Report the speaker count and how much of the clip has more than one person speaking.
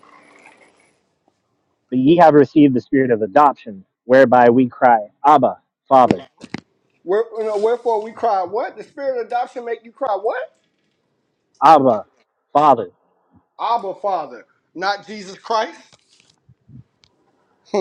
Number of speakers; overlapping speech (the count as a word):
two, no overlap